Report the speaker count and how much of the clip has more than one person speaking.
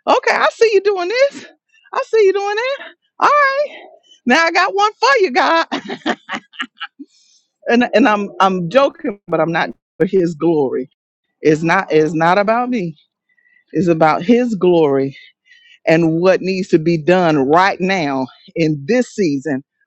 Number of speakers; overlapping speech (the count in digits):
1, no overlap